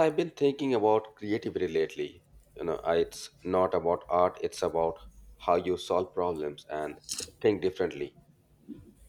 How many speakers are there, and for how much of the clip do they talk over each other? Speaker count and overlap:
1, no overlap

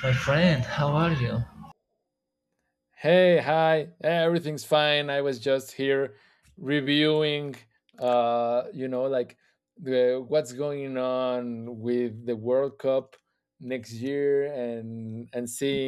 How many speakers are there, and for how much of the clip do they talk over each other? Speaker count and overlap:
2, no overlap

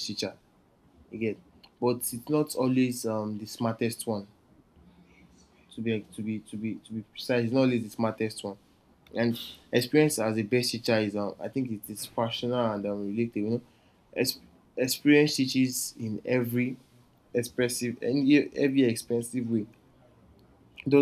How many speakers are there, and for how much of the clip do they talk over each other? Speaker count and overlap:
1, no overlap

